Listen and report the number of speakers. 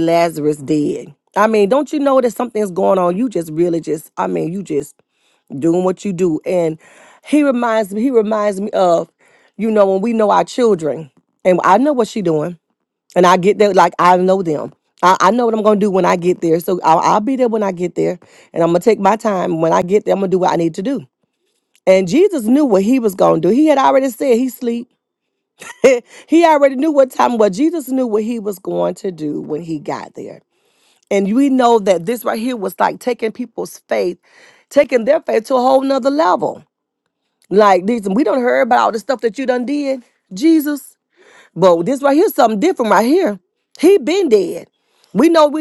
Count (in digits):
1